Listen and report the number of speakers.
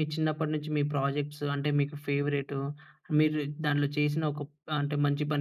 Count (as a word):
one